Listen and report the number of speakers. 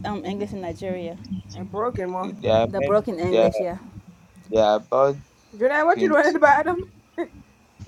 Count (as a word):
three